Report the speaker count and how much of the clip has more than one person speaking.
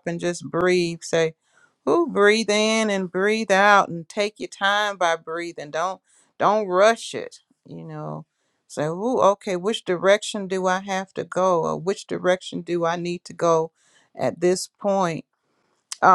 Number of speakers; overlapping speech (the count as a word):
one, no overlap